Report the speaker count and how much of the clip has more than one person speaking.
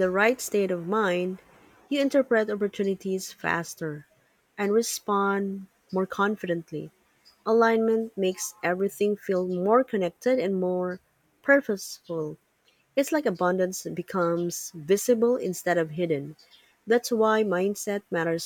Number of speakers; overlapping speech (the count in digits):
1, no overlap